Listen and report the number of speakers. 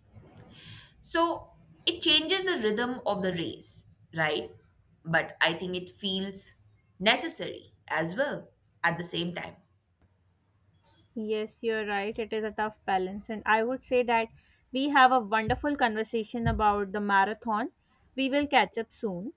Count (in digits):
2